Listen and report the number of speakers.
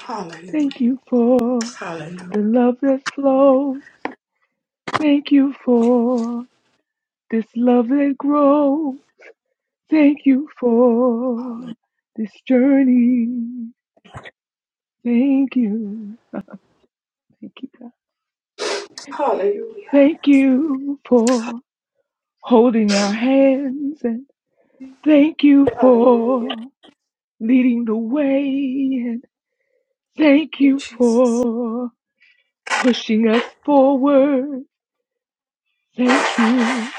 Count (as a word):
two